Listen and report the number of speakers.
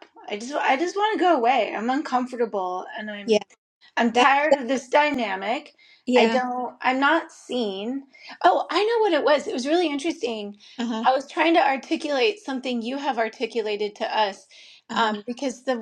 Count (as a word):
two